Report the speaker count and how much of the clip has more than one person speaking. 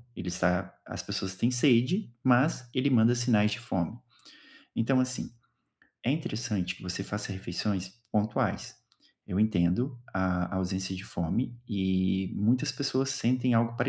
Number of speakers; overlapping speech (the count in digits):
1, no overlap